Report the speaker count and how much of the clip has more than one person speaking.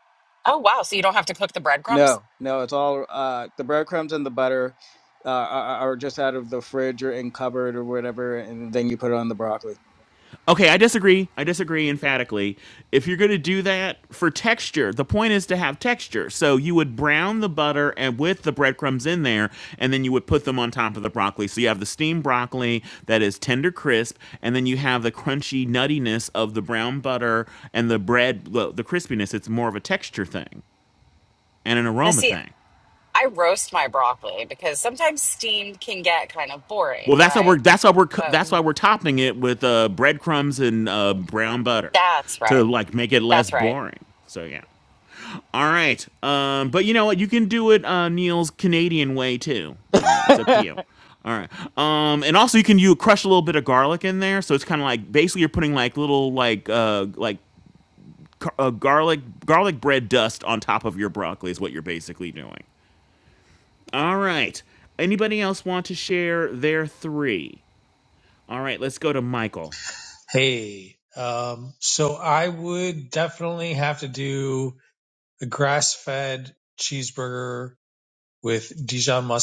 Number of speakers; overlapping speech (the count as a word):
four, about 2%